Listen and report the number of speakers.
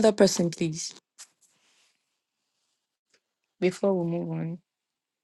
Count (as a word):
one